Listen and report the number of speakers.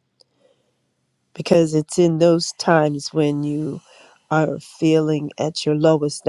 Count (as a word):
one